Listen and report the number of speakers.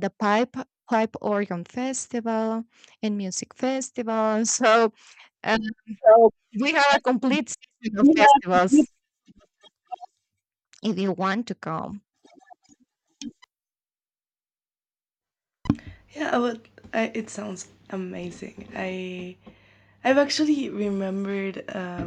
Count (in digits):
2